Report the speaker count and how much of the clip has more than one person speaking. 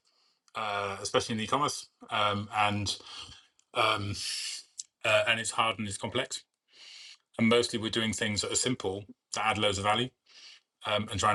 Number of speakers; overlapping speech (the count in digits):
1, no overlap